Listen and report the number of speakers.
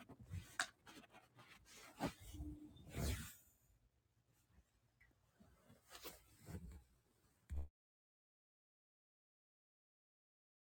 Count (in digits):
0